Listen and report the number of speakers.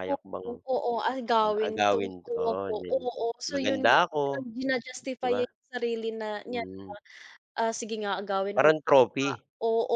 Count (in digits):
2